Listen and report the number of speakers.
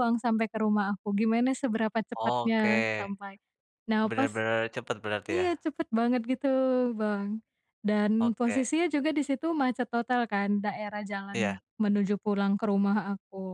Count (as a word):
two